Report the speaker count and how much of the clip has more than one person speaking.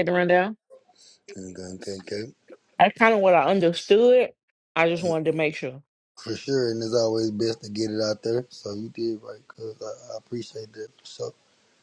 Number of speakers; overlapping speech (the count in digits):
2, about 2%